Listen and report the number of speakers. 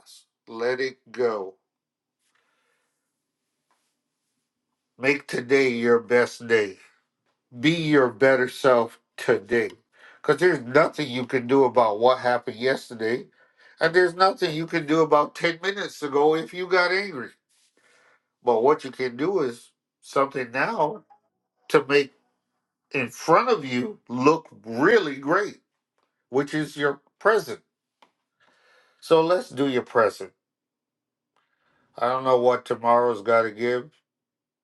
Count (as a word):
one